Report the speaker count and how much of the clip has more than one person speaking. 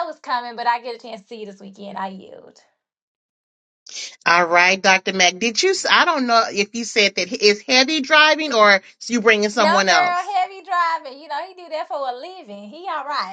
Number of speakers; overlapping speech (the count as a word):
two, about 4%